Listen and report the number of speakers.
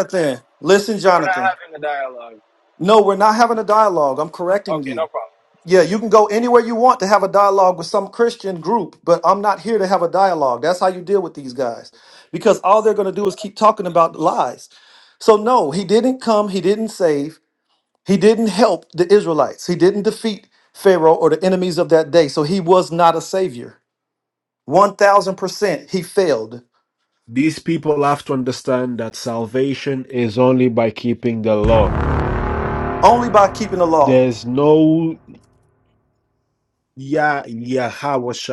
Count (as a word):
three